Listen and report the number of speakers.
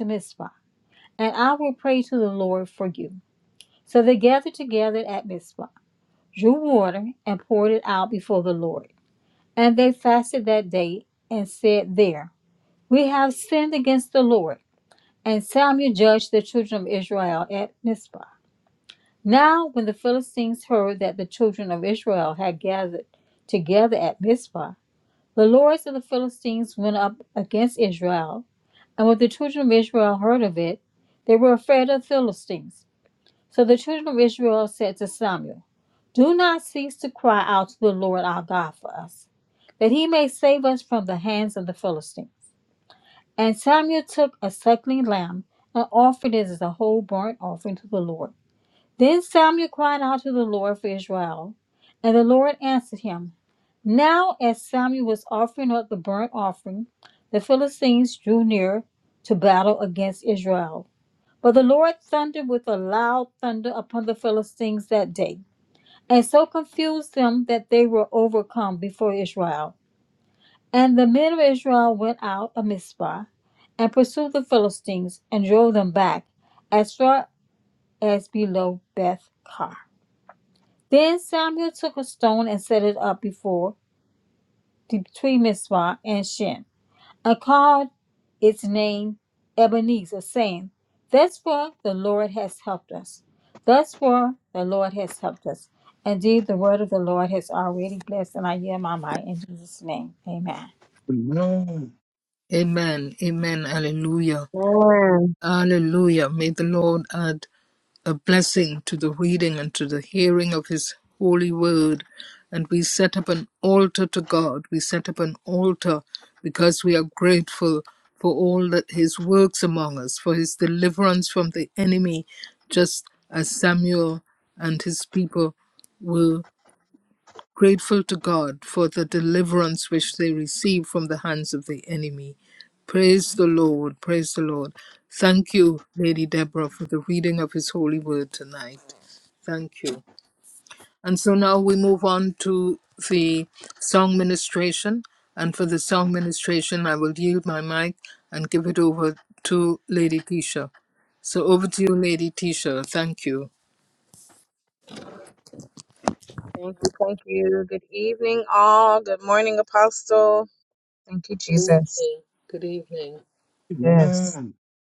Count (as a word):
four